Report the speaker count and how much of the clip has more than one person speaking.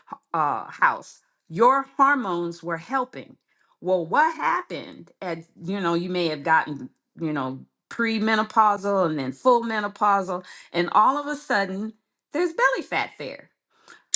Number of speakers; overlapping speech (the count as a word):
one, no overlap